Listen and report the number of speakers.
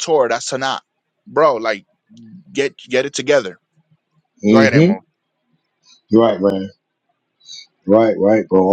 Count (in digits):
2